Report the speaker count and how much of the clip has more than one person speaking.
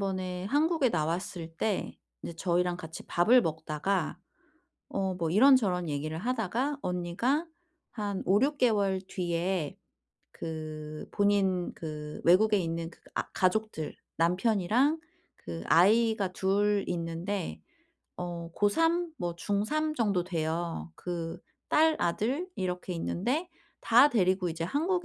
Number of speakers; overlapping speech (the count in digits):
1, no overlap